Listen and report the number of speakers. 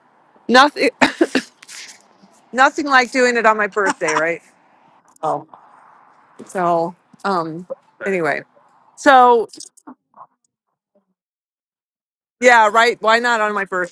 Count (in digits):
1